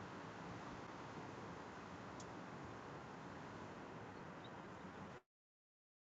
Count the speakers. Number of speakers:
0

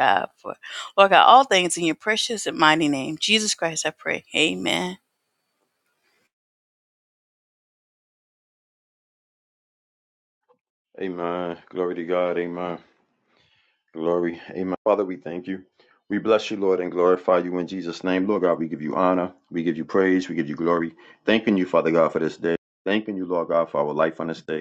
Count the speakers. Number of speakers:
2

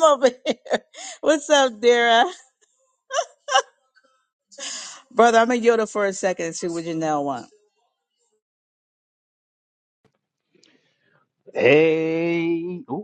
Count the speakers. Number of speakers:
2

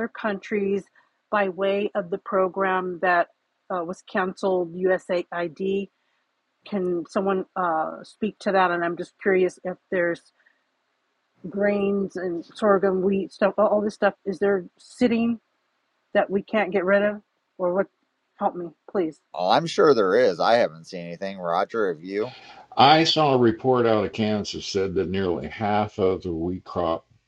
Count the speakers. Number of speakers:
3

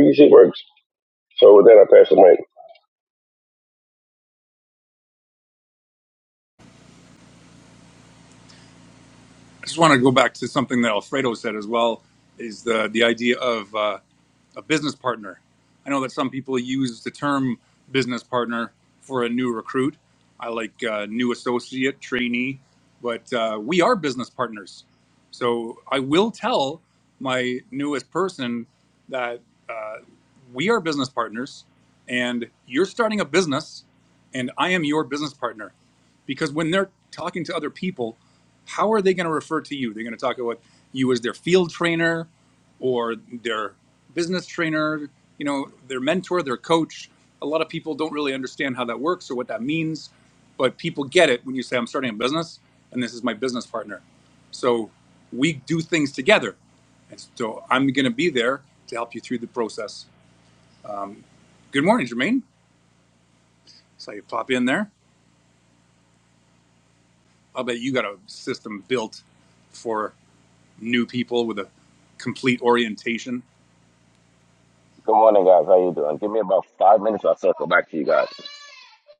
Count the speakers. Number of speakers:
3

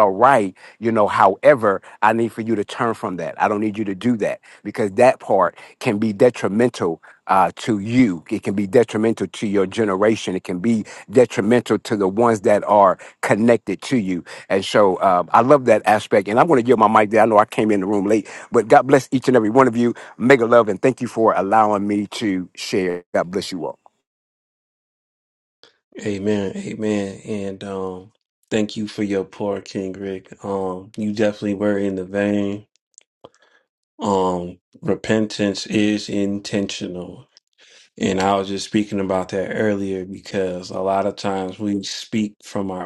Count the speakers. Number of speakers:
2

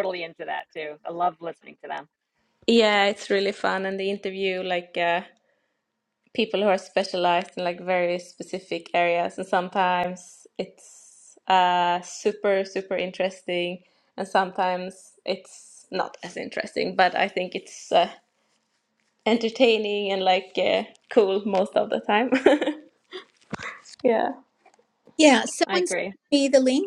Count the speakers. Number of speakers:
3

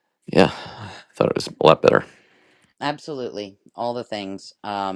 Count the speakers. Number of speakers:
2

